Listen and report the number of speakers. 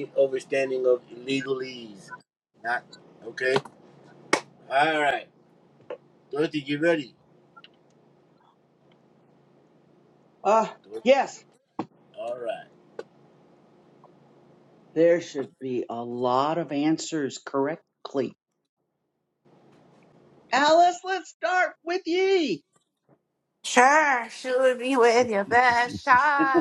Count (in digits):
3